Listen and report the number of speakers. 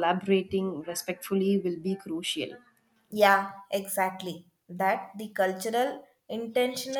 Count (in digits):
2